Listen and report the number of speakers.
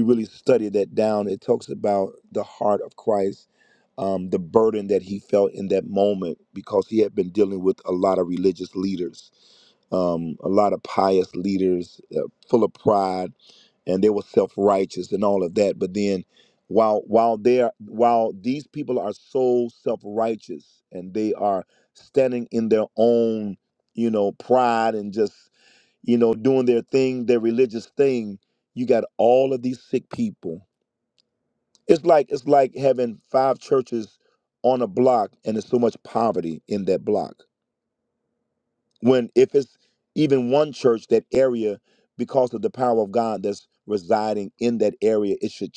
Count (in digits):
1